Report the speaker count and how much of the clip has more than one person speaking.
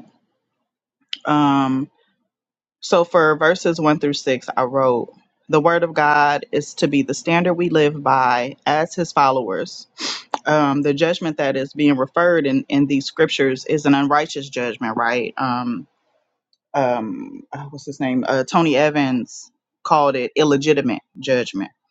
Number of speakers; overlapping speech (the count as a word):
one, no overlap